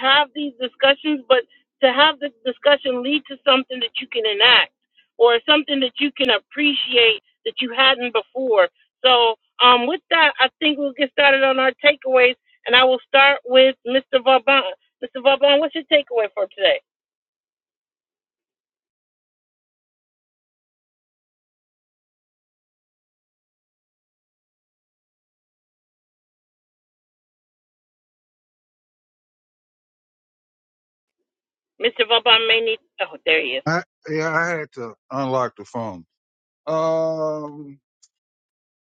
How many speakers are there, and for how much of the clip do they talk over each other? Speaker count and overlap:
two, no overlap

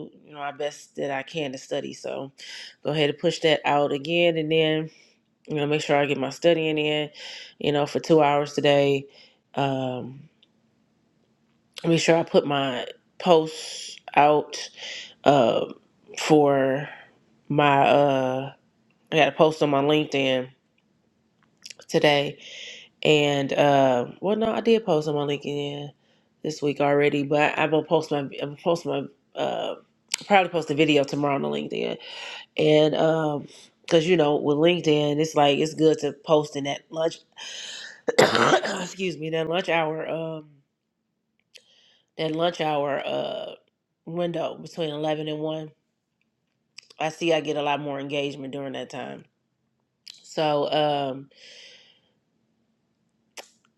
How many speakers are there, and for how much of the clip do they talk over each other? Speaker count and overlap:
one, no overlap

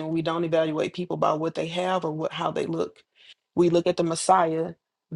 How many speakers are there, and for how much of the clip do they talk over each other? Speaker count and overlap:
one, no overlap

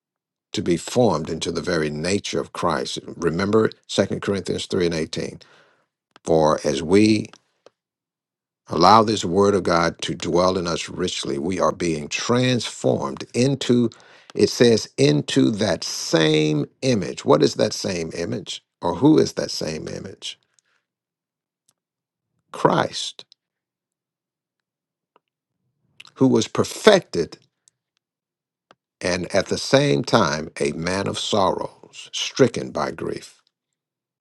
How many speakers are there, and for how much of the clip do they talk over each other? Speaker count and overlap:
one, no overlap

